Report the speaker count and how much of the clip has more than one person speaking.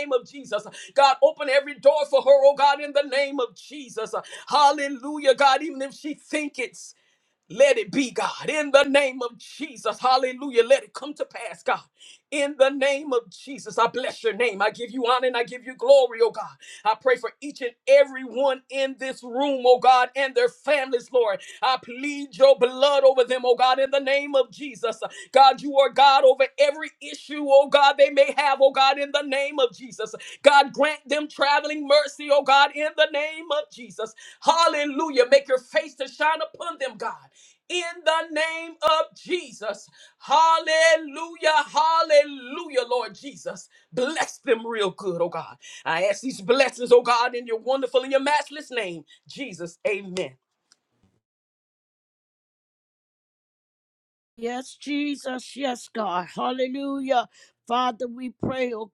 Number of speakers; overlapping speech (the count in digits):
2, no overlap